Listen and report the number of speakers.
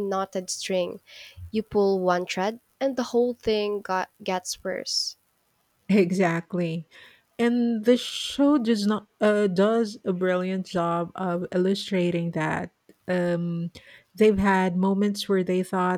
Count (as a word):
two